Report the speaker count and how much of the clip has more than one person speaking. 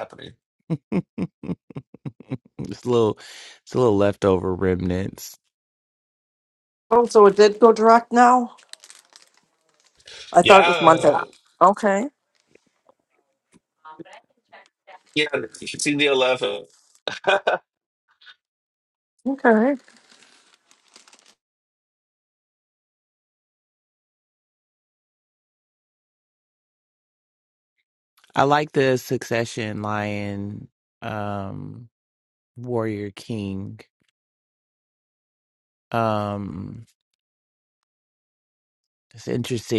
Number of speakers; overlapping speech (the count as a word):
three, about 2%